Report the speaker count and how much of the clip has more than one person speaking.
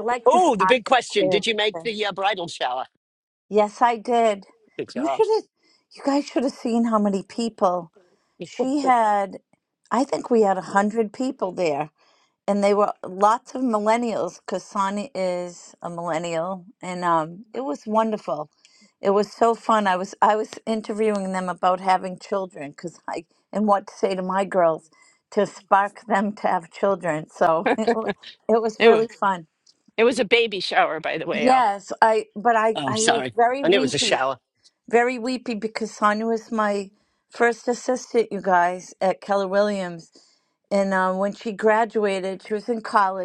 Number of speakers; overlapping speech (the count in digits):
3, about 7%